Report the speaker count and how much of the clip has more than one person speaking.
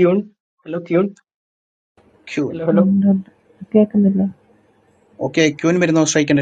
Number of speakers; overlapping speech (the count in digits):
3, about 4%